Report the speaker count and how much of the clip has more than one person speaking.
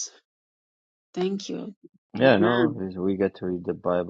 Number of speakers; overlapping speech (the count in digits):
2, about 13%